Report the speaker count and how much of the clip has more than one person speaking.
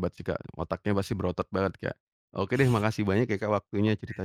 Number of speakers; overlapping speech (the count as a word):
one, no overlap